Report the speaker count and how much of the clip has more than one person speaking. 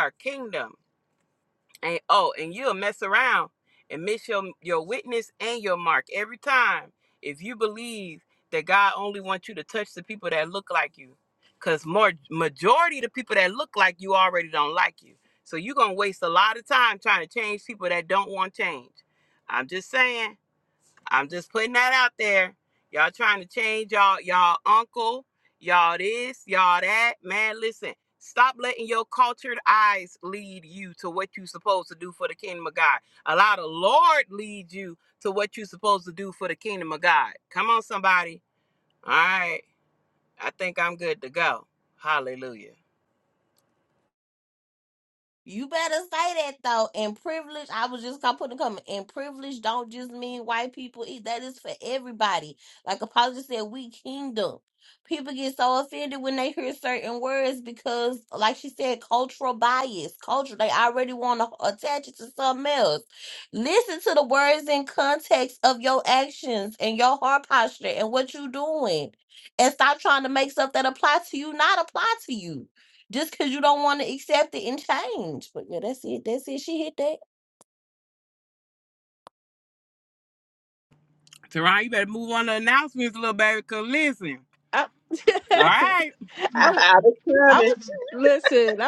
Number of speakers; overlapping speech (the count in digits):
4, about 1%